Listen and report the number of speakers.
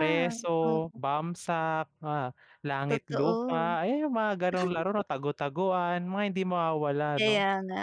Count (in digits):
2